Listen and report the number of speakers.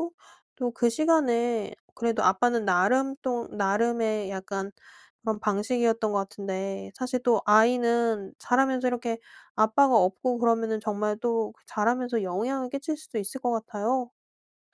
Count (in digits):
1